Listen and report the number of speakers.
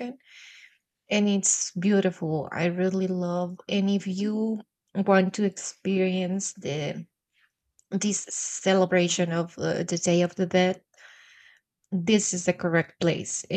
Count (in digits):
1